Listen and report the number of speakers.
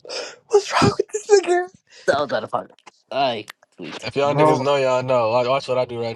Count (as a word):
three